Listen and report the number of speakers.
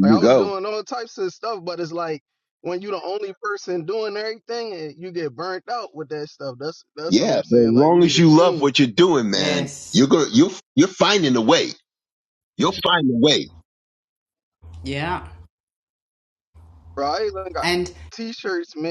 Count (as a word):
three